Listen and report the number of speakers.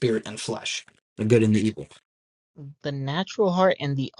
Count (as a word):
two